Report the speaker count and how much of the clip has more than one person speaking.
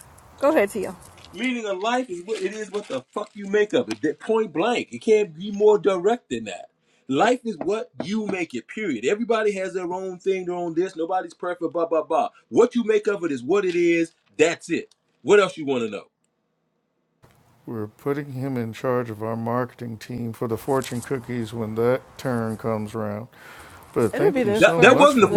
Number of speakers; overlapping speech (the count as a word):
three, about 5%